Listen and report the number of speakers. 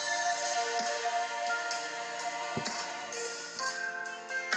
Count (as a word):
zero